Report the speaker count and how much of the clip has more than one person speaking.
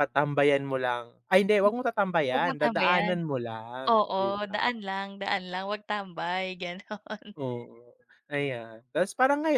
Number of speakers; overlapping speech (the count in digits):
2, about 18%